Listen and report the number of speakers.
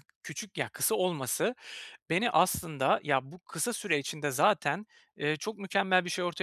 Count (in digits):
1